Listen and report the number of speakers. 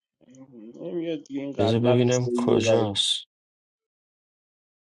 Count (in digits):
2